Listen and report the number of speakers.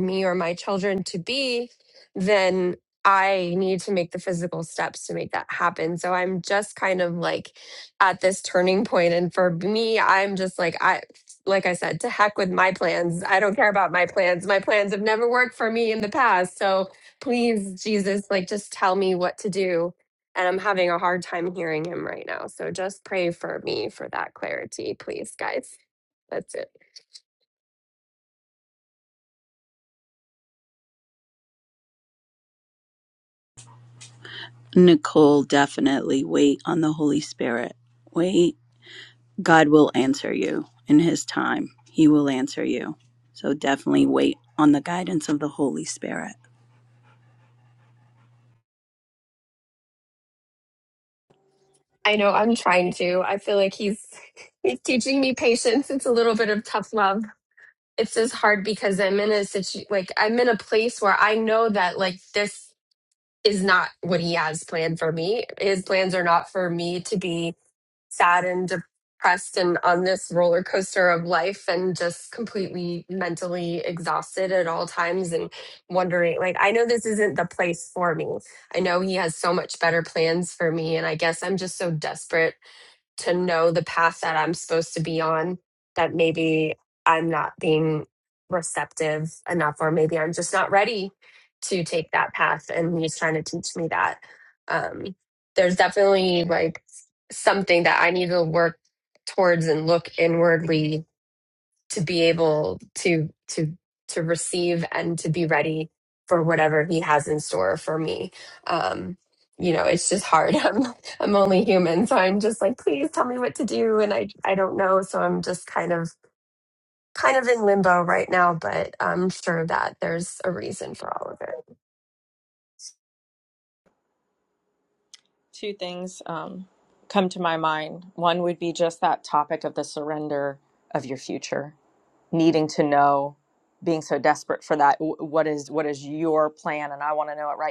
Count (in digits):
3